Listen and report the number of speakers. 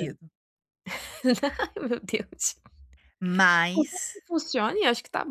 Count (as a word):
two